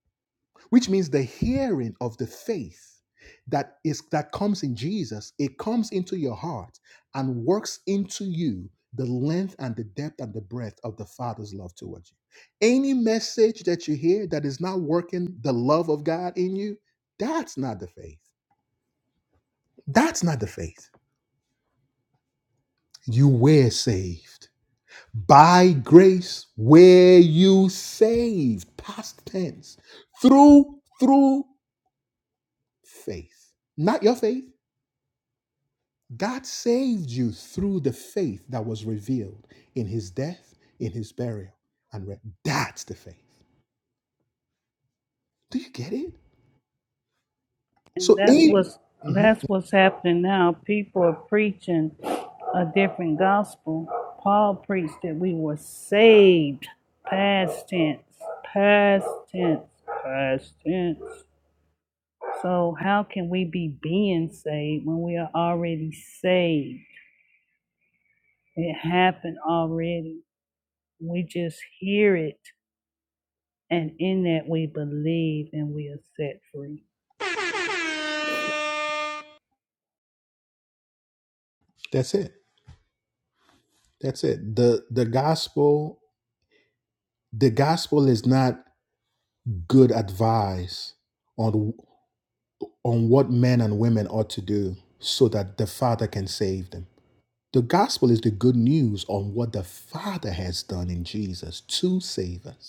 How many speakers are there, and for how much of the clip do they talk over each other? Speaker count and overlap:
2, about 1%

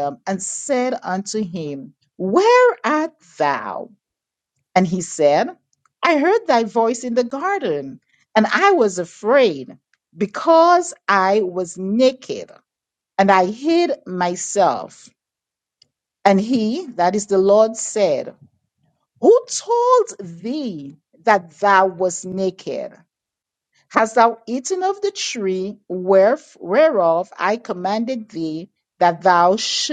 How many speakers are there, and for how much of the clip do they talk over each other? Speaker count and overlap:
1, no overlap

